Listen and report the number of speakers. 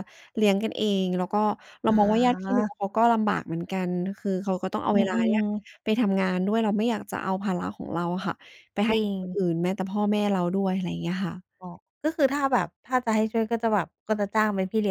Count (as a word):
two